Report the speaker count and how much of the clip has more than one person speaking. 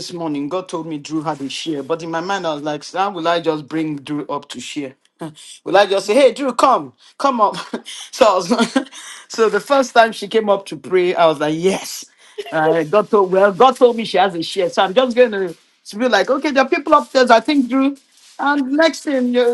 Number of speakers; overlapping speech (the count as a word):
one, no overlap